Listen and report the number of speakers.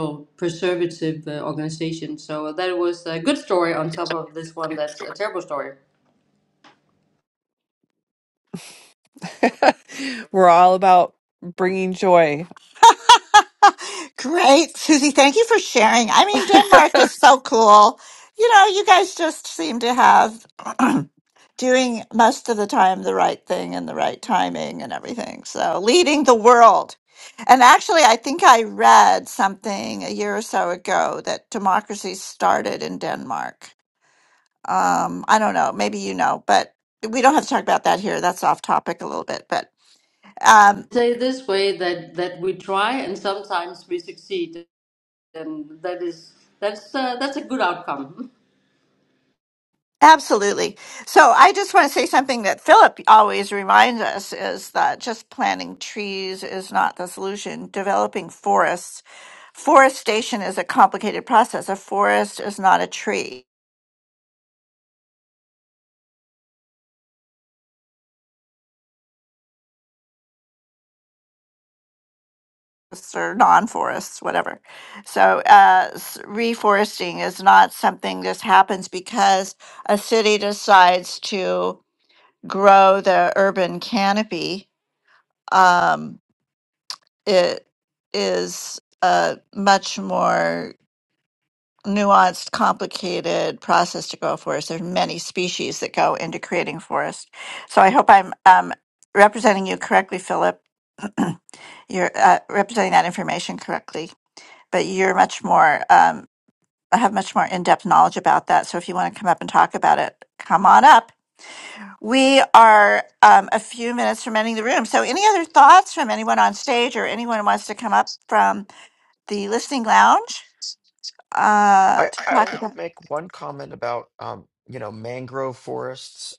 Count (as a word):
four